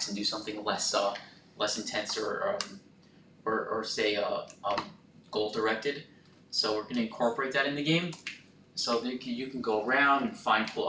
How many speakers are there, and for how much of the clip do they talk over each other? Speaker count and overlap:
1, no overlap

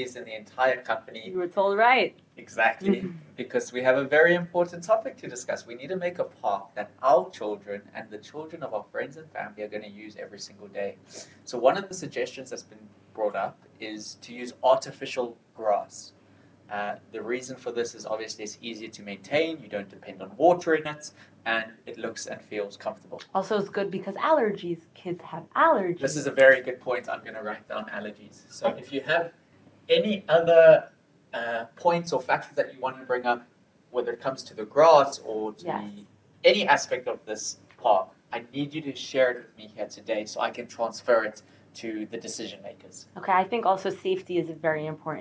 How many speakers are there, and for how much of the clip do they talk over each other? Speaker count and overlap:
2, about 2%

